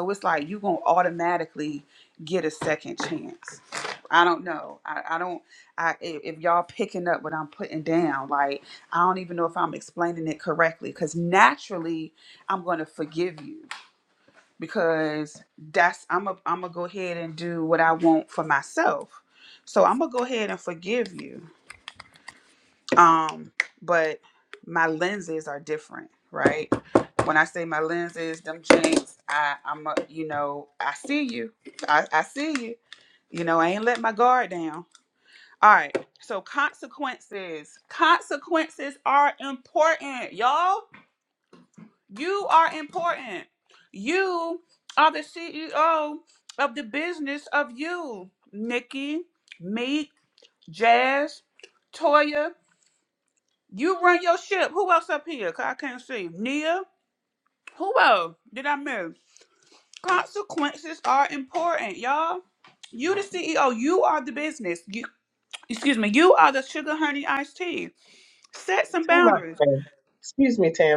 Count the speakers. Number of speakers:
2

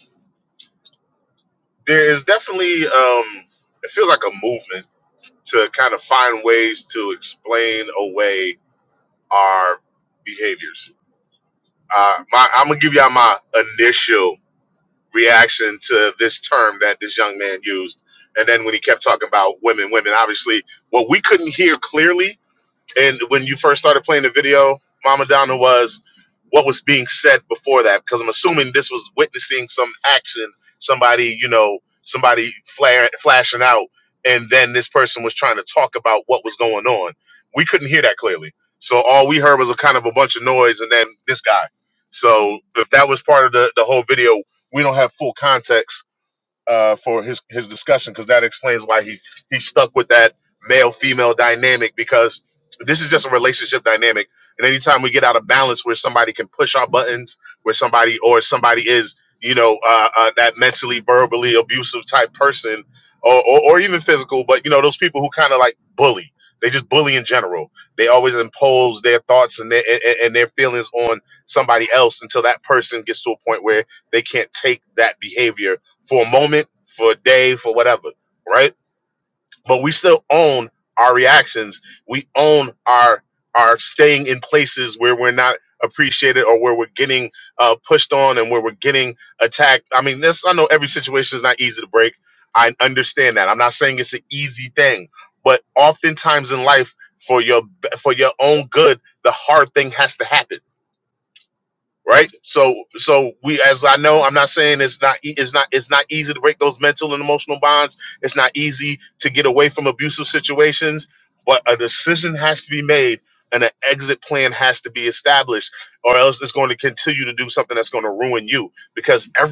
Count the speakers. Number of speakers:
1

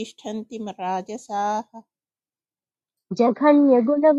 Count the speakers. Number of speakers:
2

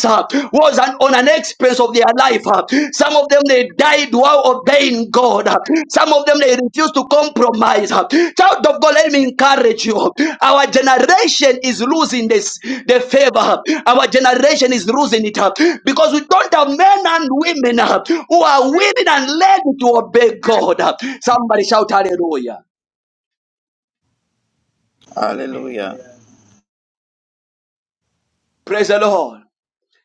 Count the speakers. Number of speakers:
2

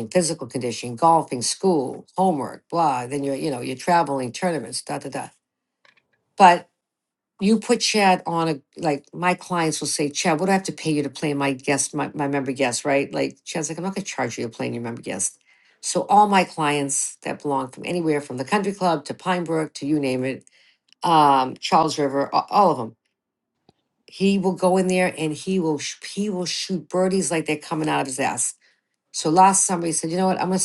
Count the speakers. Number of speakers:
1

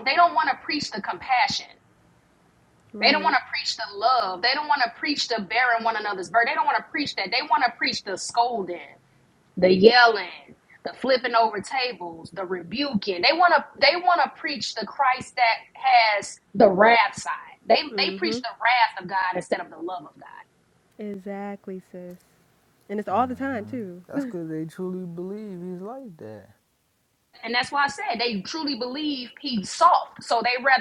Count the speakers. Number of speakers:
3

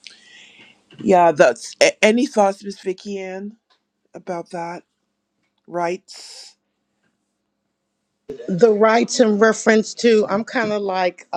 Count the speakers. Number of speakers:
2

